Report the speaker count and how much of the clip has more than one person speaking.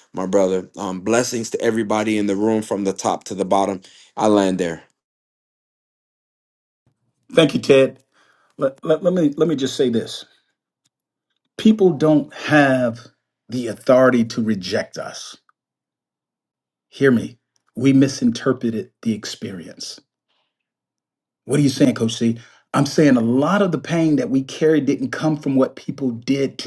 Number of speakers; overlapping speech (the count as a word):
two, no overlap